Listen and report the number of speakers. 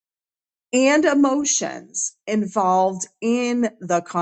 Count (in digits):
1